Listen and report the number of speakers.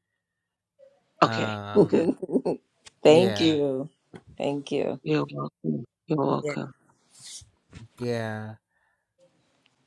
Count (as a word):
three